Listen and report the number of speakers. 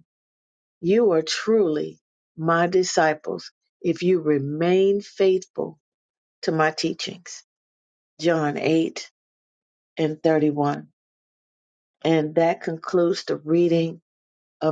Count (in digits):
1